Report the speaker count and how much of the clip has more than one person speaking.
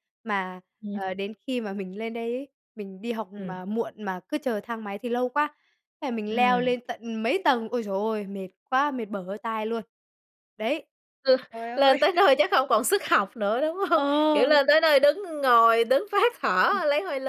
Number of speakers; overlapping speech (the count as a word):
two, about 9%